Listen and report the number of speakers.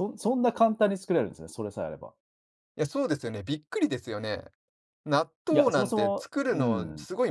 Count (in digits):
2